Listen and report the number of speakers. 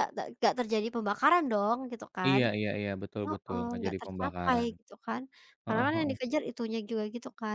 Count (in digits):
2